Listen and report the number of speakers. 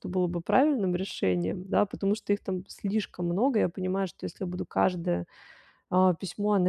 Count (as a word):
one